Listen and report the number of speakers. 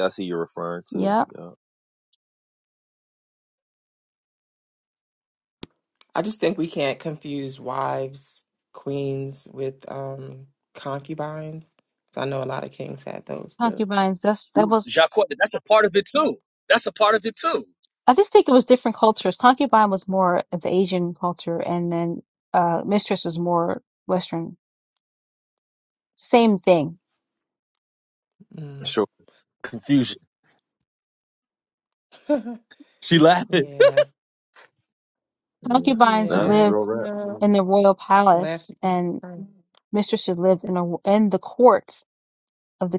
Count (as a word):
four